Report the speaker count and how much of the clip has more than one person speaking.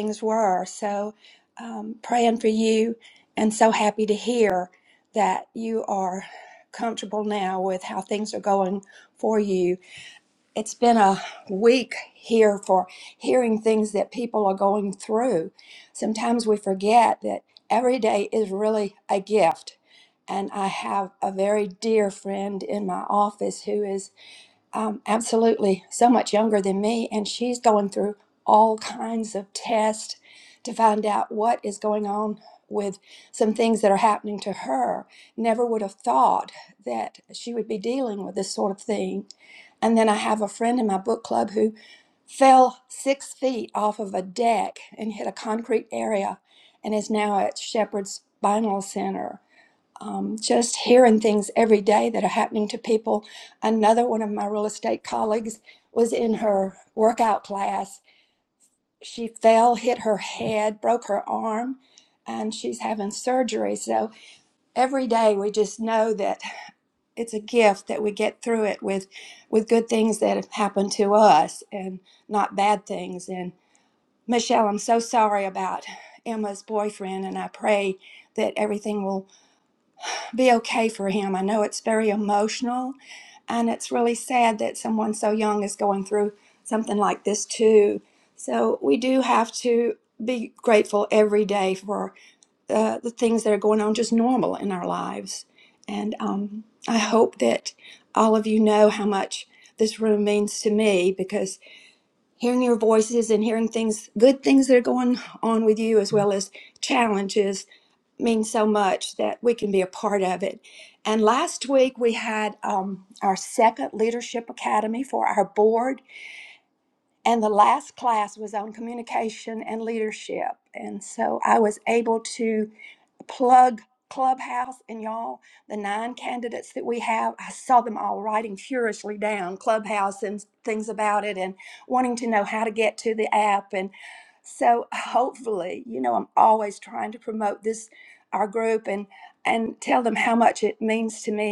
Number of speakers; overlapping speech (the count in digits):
1, no overlap